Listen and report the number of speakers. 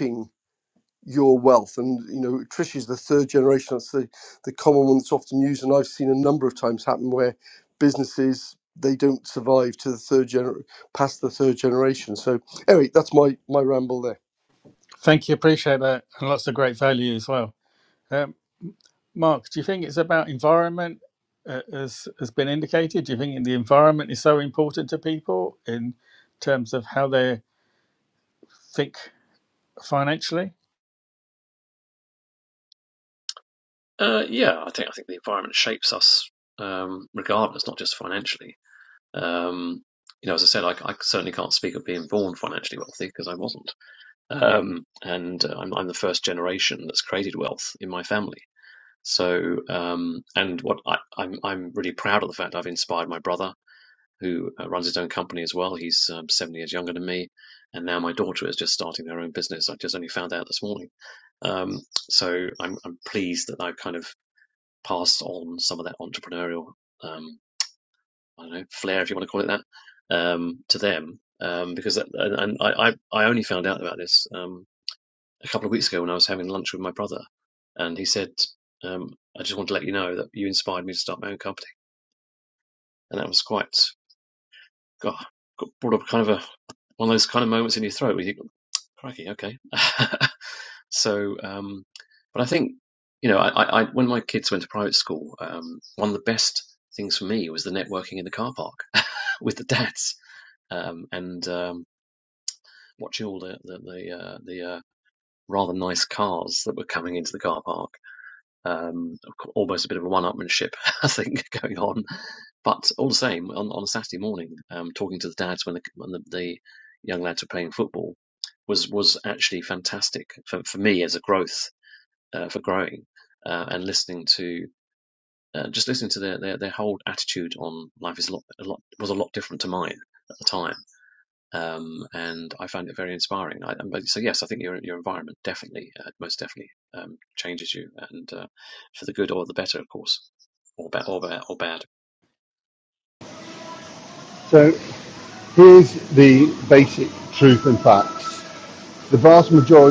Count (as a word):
four